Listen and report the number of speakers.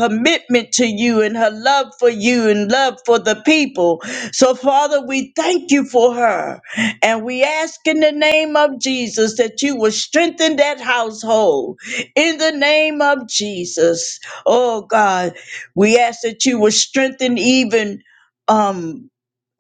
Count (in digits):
1